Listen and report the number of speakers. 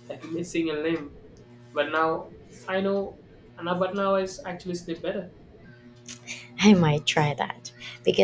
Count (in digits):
2